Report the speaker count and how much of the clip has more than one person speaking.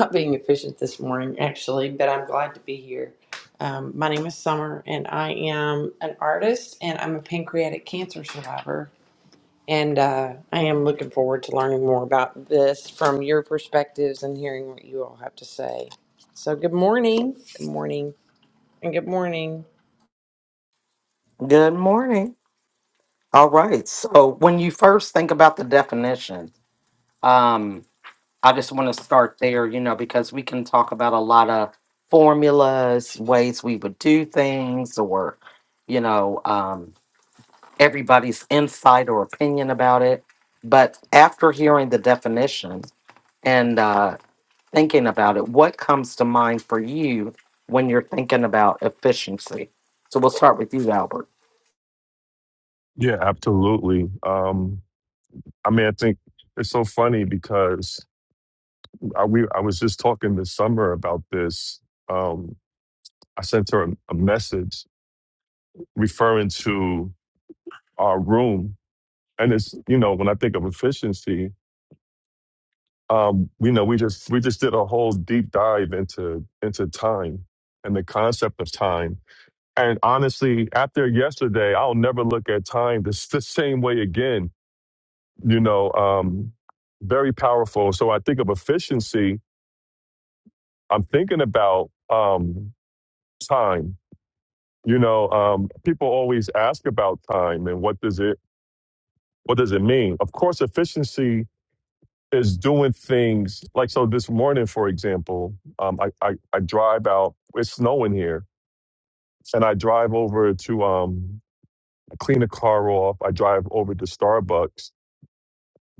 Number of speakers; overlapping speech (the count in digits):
3, no overlap